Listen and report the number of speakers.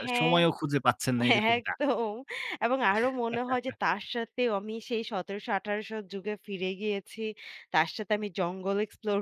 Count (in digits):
2